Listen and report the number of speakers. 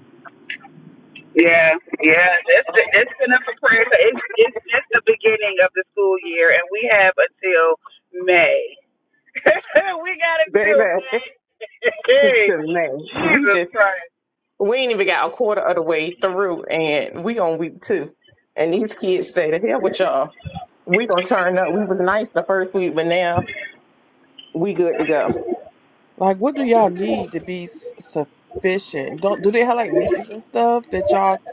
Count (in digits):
3